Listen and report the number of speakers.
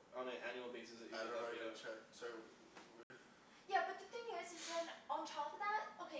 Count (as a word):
three